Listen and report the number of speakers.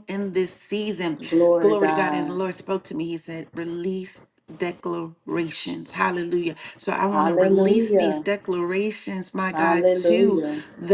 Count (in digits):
2